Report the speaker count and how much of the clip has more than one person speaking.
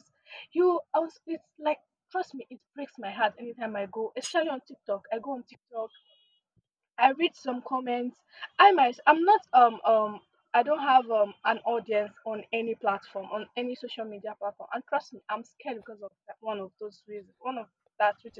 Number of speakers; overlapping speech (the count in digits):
1, no overlap